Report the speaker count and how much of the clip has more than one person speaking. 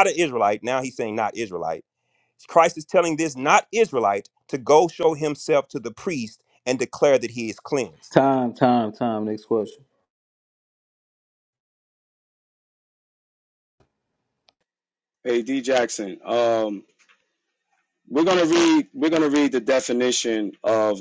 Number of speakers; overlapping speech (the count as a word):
three, no overlap